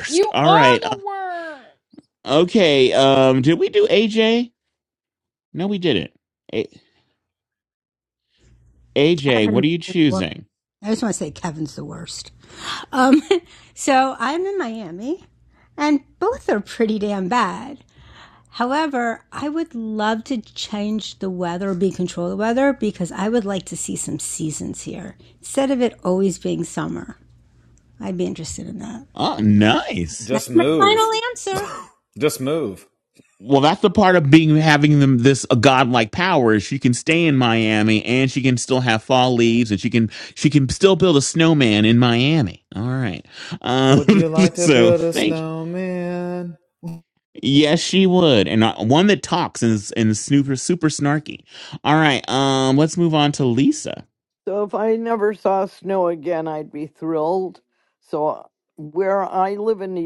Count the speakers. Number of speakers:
5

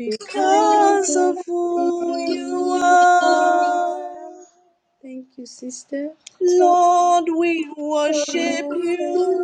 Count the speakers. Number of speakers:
2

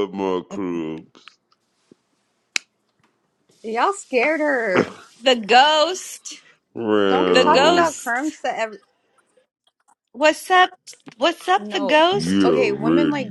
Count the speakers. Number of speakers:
3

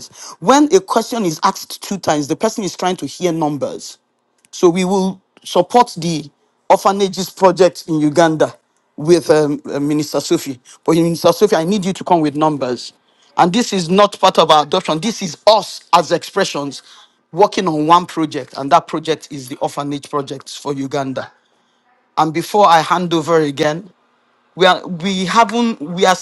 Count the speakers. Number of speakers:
1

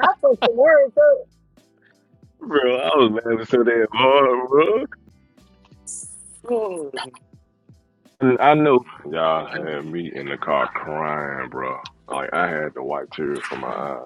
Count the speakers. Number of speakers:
3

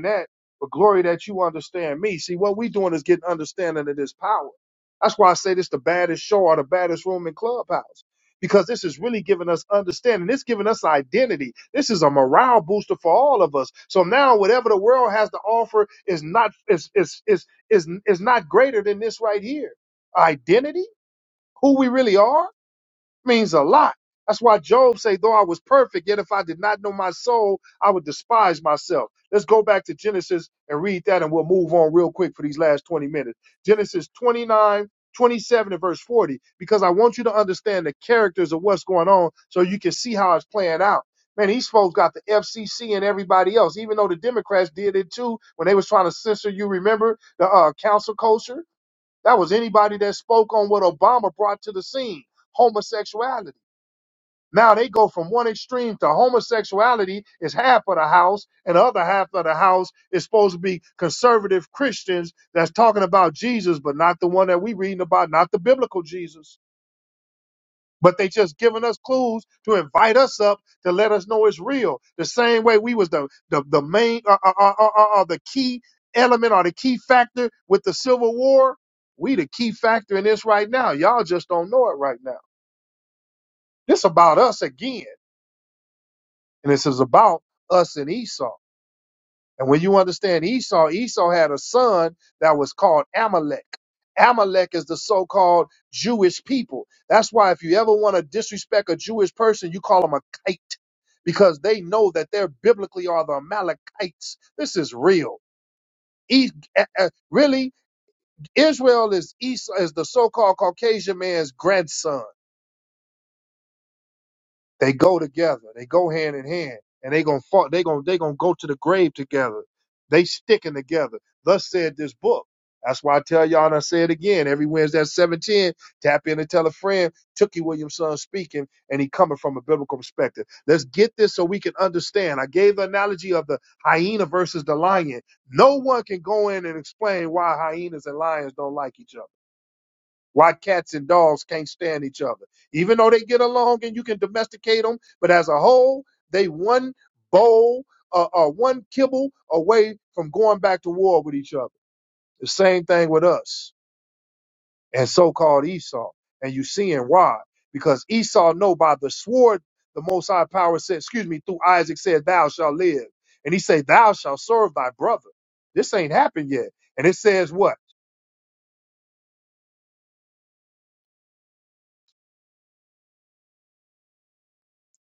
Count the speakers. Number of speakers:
1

